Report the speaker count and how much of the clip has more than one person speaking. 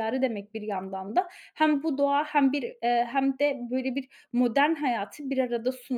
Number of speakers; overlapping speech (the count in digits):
1, no overlap